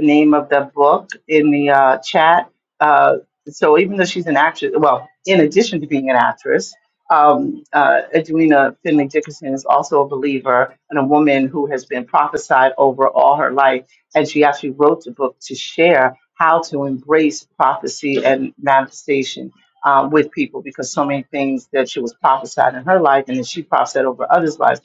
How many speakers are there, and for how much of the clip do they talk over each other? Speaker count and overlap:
1, no overlap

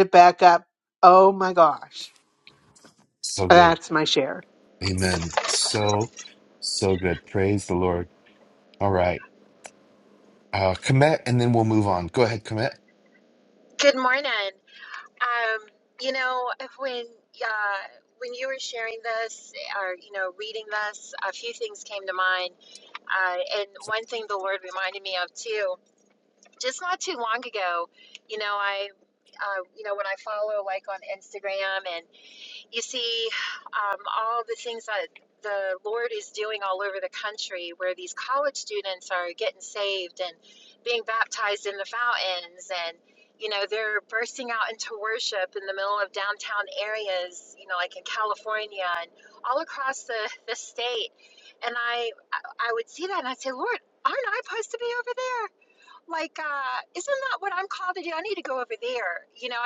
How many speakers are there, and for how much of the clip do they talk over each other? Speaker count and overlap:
3, under 1%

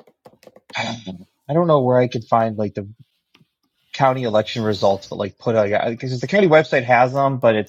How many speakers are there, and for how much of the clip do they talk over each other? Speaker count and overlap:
1, no overlap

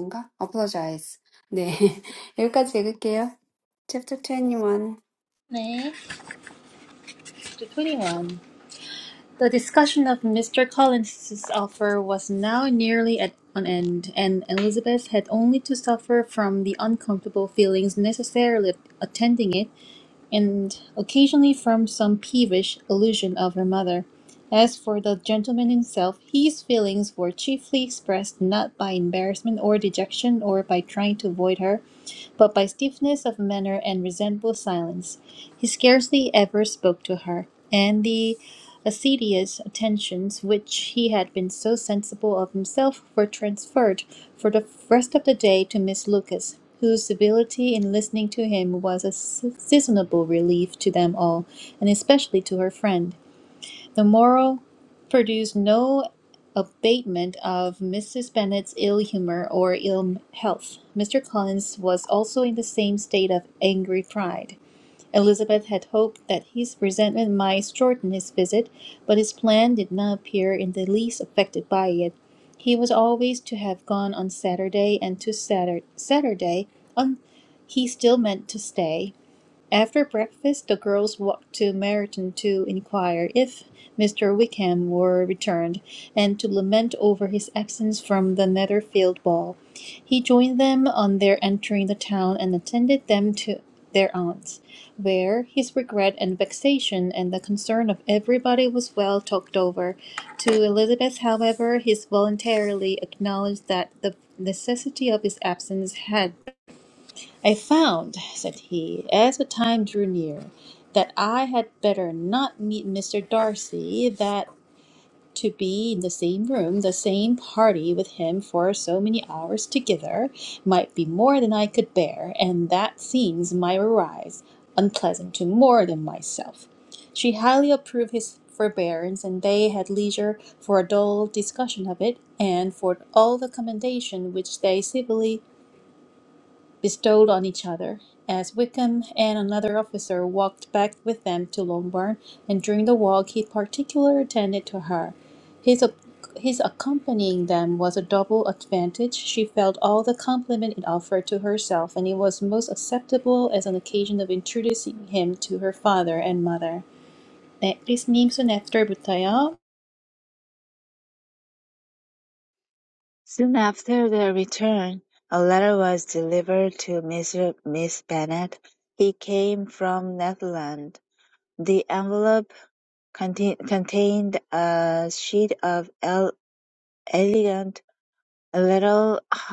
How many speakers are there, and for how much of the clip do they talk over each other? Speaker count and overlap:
3, no overlap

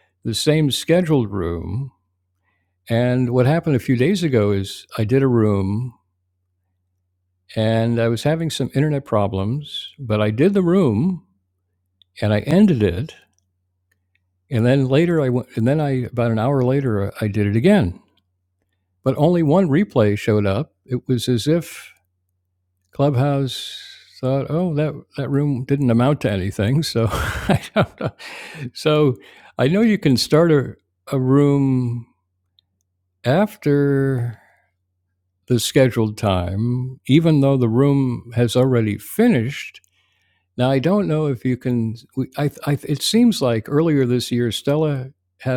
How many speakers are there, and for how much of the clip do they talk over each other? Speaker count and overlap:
1, no overlap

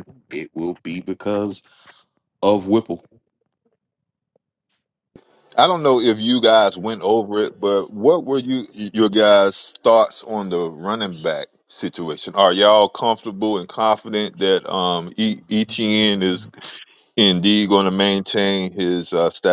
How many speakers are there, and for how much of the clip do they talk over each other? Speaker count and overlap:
2, no overlap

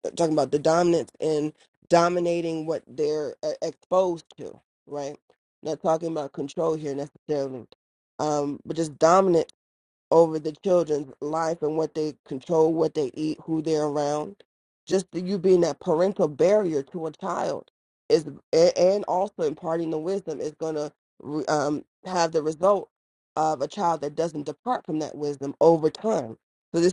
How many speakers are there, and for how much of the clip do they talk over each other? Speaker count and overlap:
1, no overlap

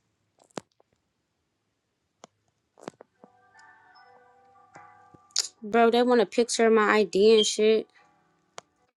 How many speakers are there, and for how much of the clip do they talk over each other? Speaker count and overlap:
1, no overlap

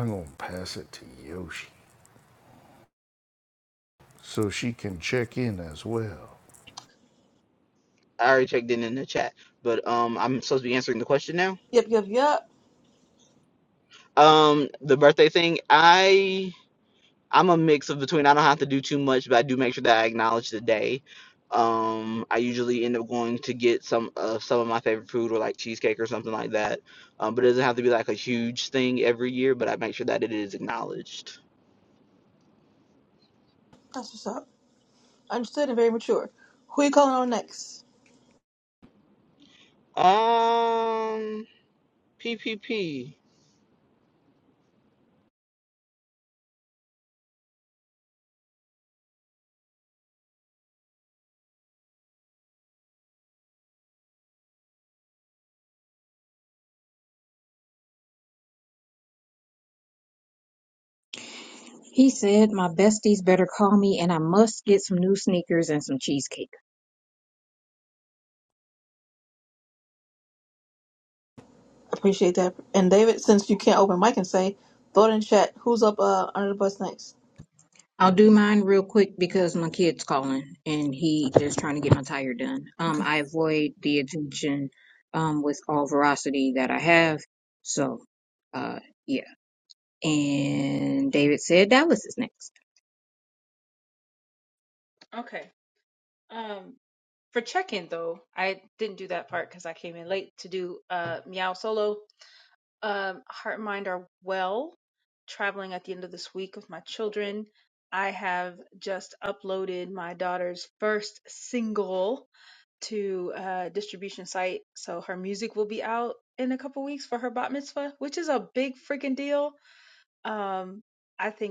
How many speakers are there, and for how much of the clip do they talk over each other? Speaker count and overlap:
5, under 1%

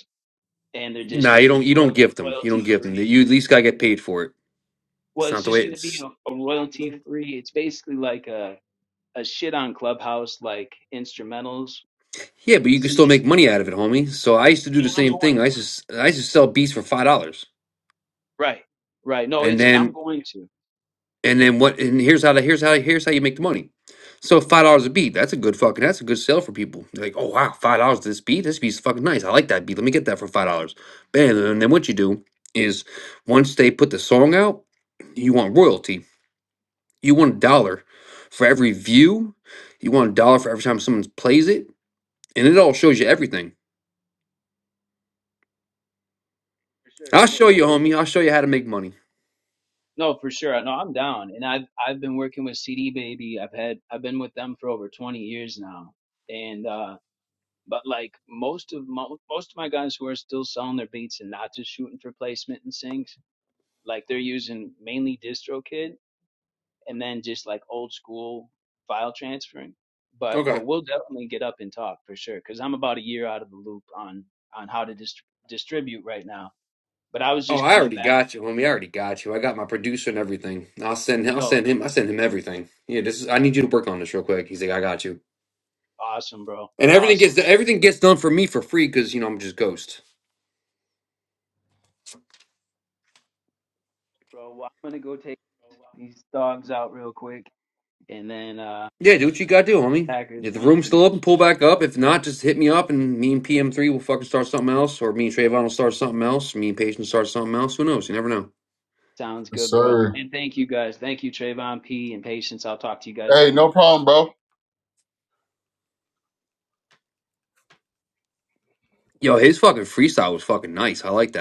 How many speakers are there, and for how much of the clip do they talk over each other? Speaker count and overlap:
3, about 7%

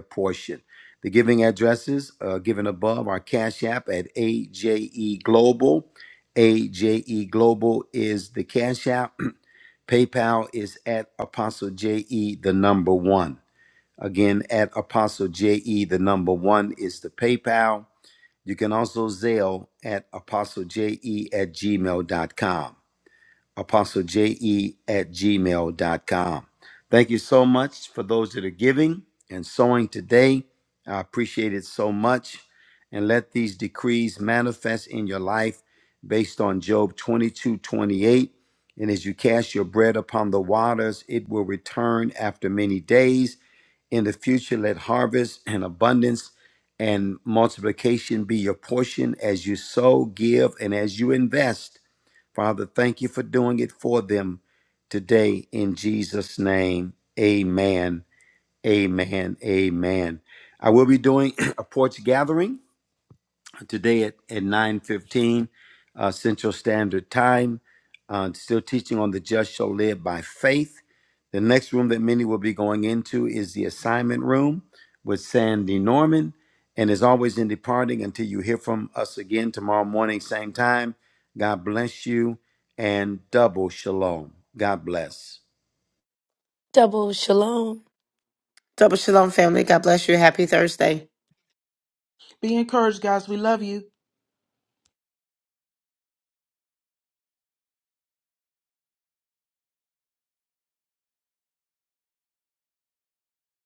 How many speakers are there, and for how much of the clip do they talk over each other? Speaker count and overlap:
4, no overlap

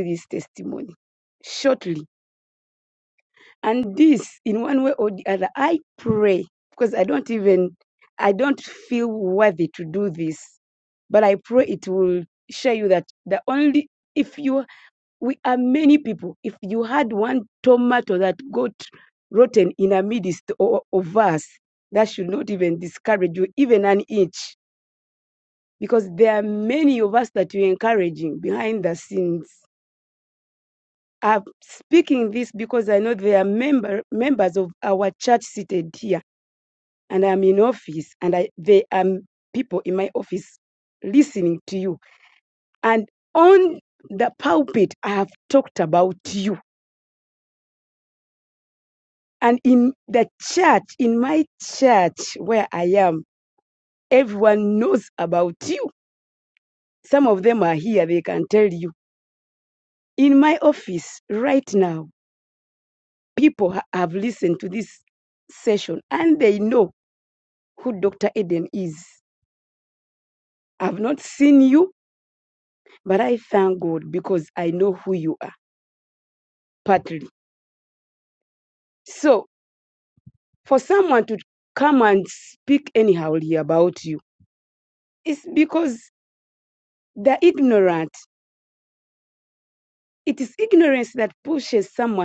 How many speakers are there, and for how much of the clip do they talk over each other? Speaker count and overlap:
1, no overlap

